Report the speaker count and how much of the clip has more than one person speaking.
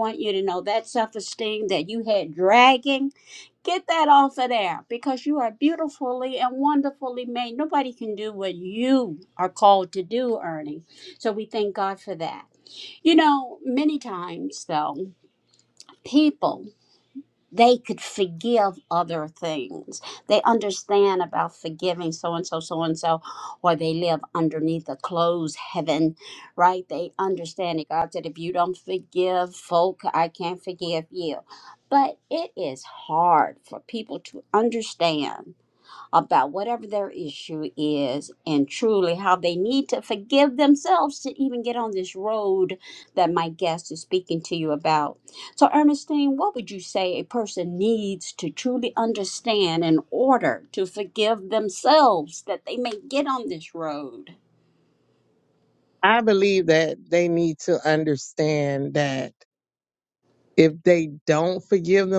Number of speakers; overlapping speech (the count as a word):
two, no overlap